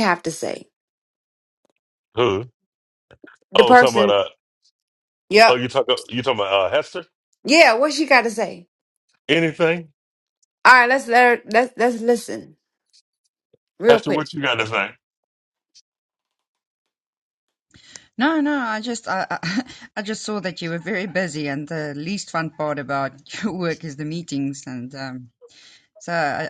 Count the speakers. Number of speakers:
three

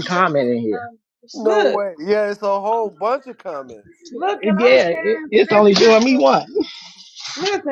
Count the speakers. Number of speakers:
three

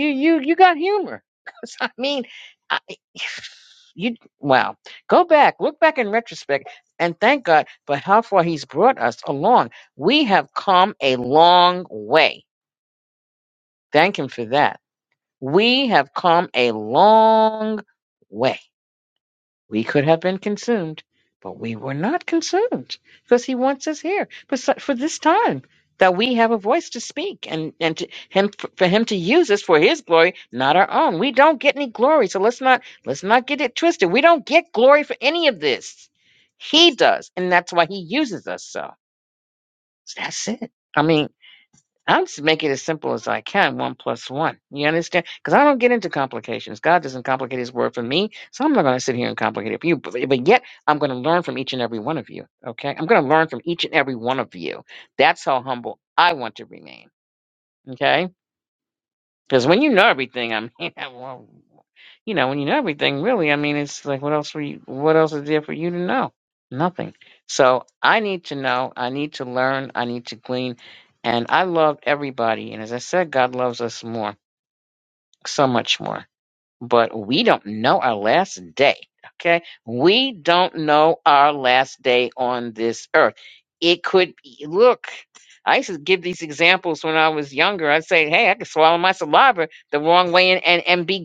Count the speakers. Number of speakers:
one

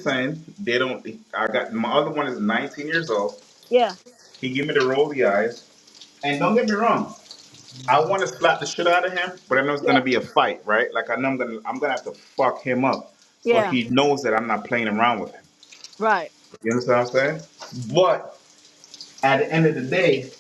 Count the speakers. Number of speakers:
two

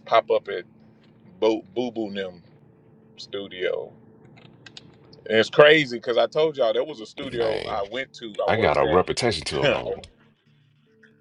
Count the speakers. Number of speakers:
two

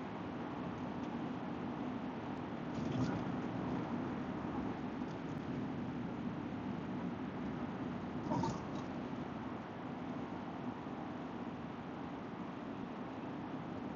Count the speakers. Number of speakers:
zero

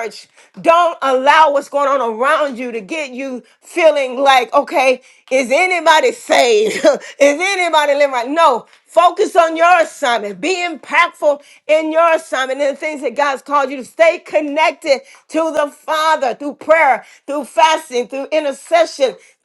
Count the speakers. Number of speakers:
one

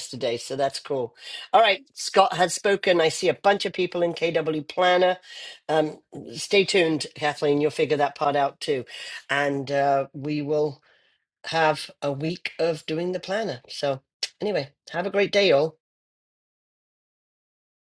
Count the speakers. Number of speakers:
one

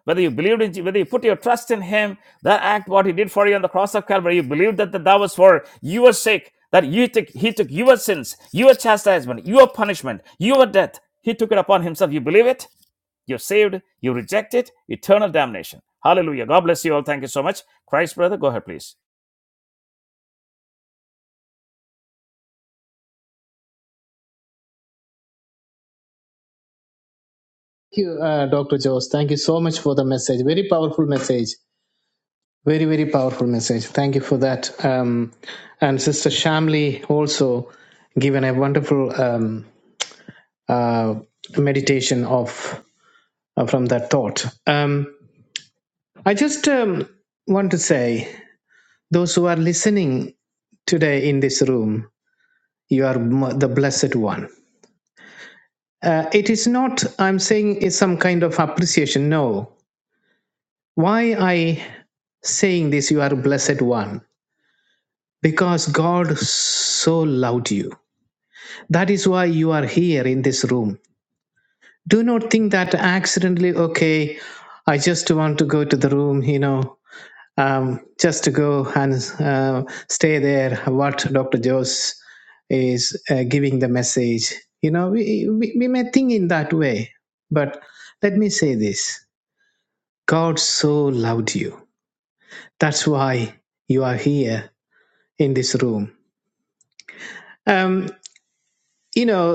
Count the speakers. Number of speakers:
two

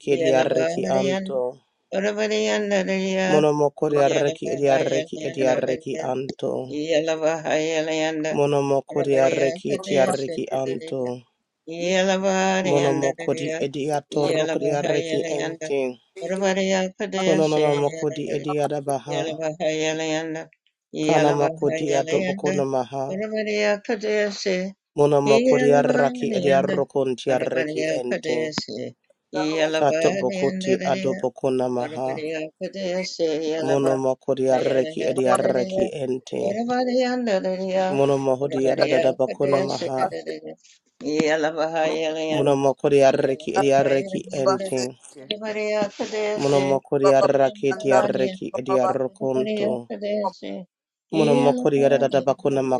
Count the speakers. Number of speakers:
two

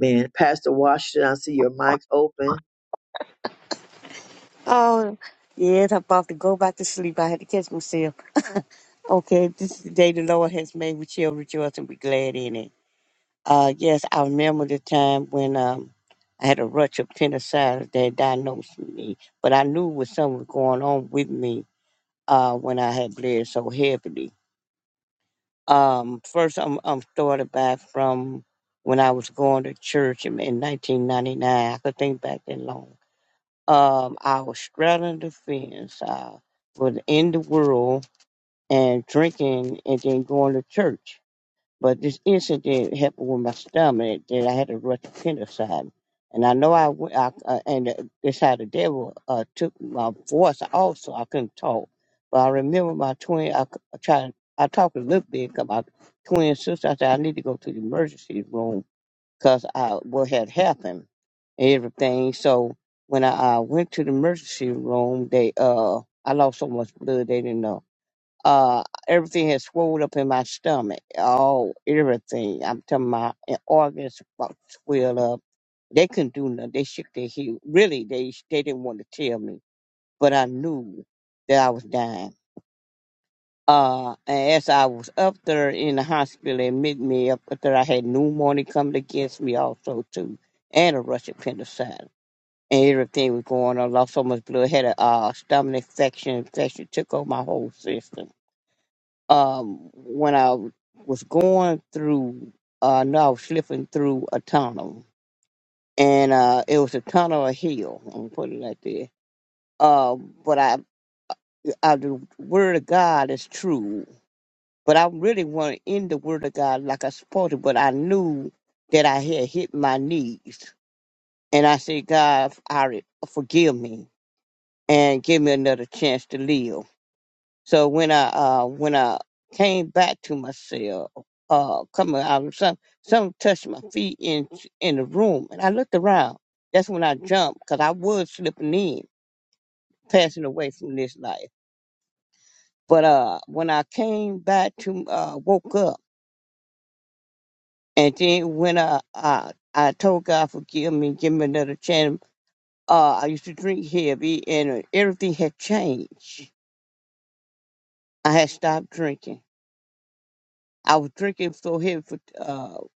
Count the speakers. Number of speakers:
two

